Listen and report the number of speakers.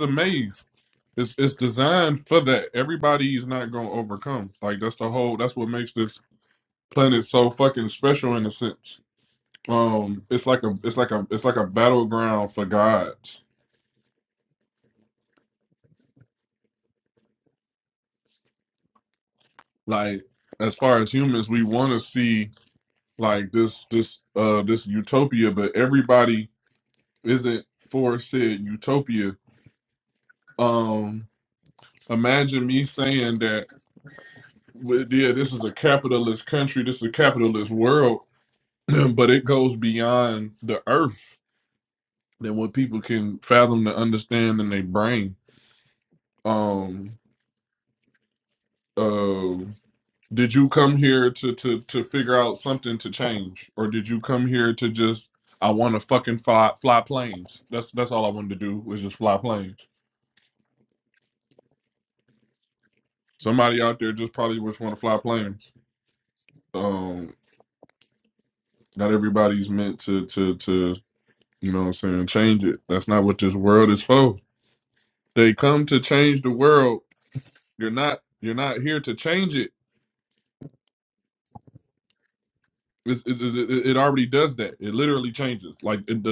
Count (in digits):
1